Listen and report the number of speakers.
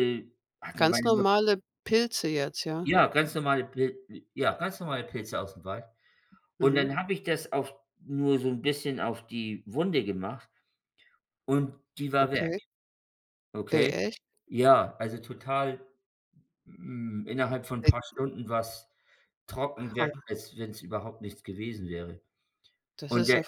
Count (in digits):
2